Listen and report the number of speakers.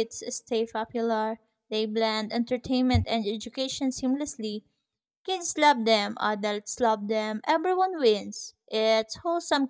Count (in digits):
1